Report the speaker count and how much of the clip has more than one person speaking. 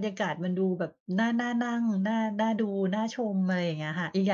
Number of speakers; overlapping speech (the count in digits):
1, no overlap